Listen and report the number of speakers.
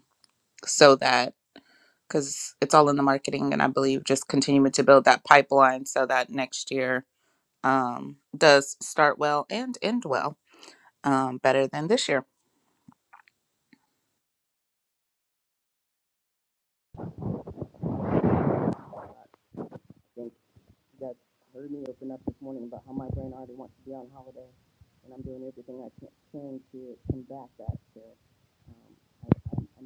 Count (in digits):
2